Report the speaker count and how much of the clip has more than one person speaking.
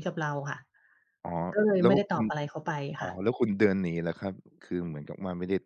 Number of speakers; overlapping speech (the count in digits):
2, about 12%